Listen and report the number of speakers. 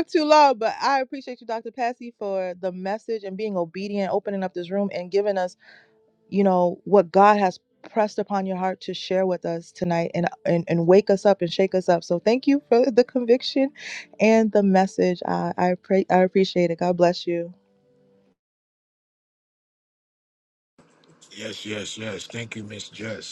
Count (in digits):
2